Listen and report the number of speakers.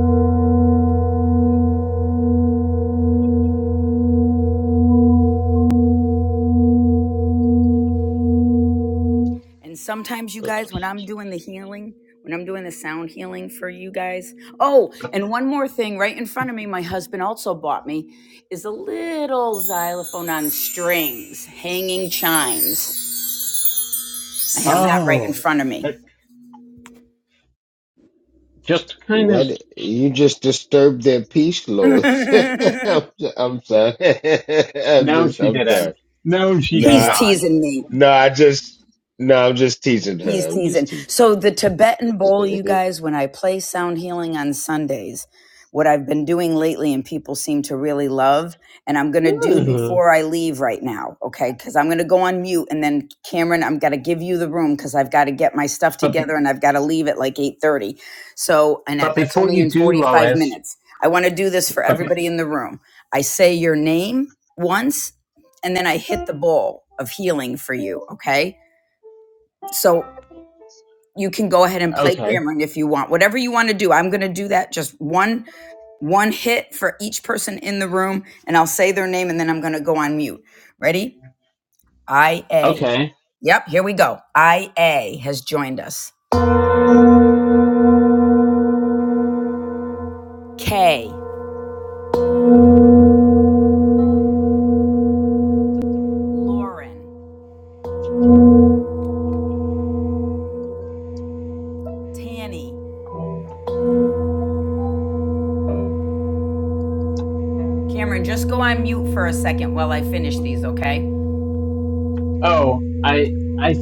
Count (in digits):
3